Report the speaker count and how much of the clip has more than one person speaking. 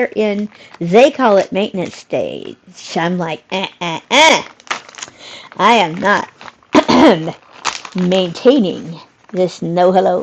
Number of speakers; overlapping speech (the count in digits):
1, no overlap